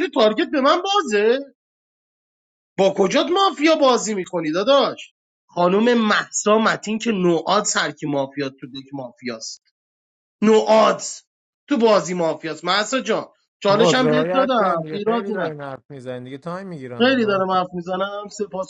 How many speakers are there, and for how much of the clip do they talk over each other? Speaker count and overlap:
2, about 12%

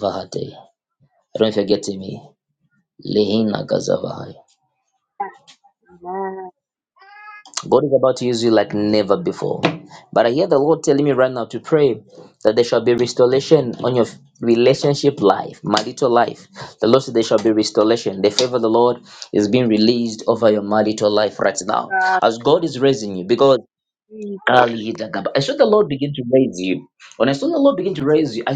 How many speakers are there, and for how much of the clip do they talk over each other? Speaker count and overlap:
2, about 3%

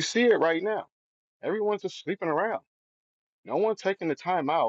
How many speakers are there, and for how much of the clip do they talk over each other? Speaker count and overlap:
1, no overlap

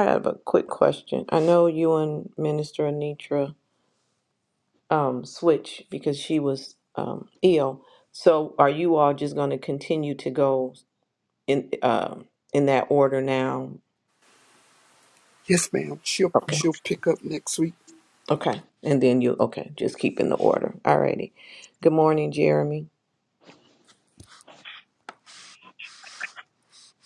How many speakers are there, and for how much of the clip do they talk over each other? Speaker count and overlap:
2, about 1%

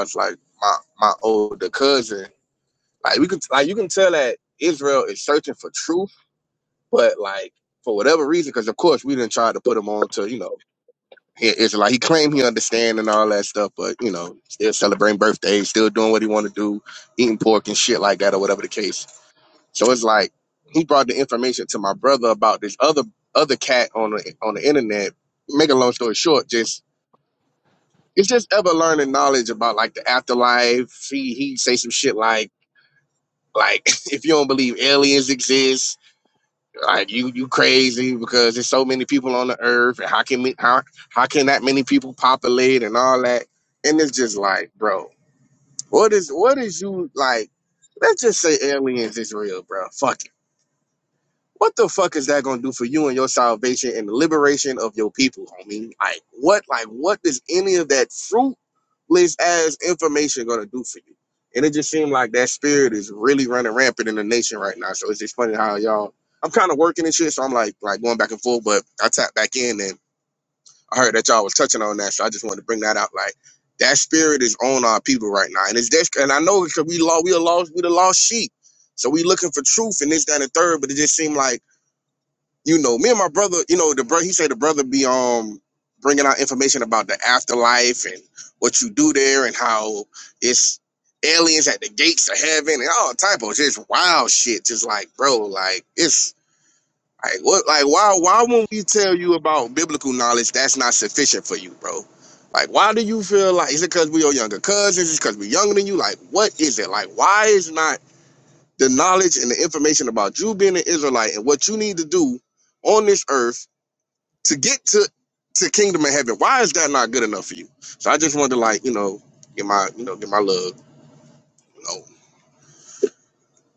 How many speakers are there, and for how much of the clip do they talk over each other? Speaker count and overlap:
1, no overlap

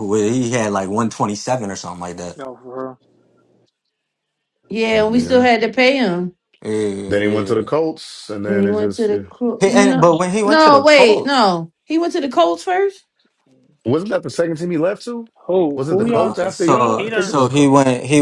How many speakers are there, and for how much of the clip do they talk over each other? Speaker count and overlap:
4, about 28%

